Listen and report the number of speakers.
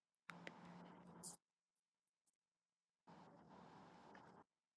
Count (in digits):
0